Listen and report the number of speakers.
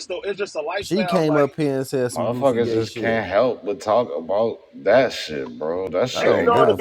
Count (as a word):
three